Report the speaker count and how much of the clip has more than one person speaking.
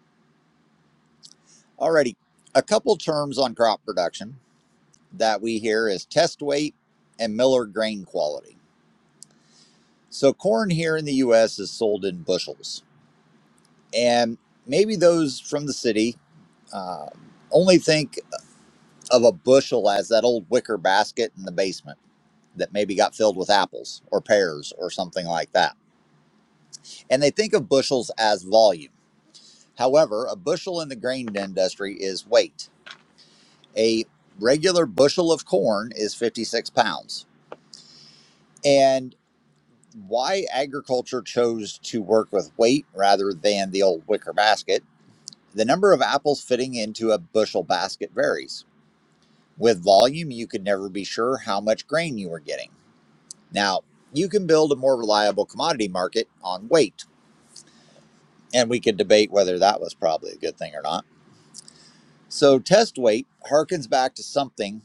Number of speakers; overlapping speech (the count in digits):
1, no overlap